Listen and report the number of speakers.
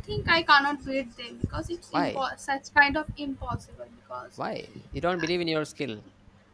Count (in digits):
2